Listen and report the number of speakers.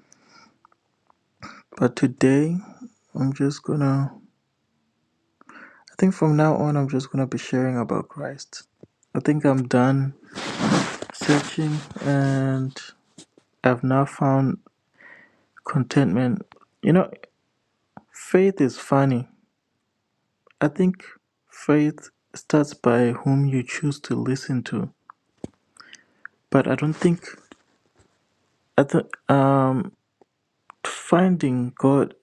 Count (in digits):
1